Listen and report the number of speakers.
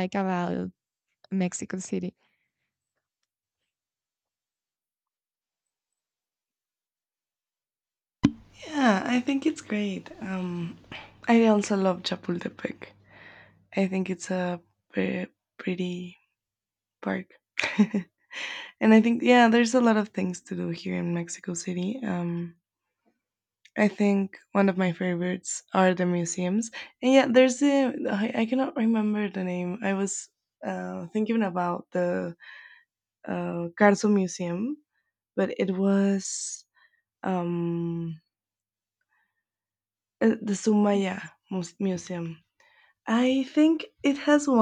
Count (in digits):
2